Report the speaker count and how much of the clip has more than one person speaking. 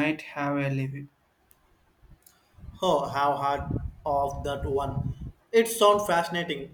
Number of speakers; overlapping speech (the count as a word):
two, no overlap